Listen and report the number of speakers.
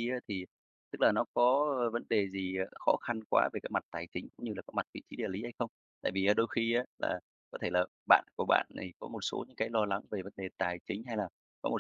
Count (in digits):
1